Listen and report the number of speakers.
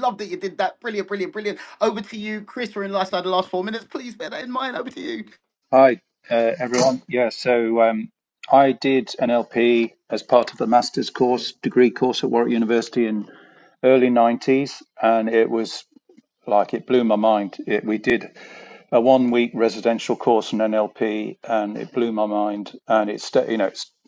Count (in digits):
2